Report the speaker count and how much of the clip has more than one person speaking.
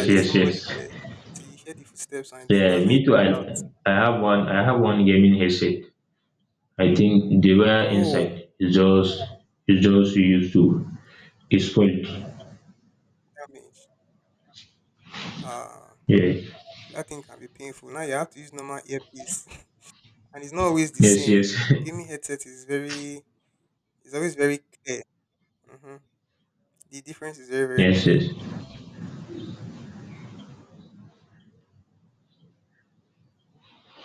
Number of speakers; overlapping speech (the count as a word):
two, about 8%